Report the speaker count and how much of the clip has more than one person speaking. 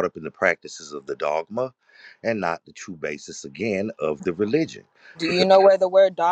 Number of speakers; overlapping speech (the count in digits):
2, about 3%